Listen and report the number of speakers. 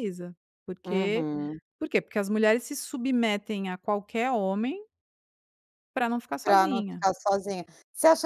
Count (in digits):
2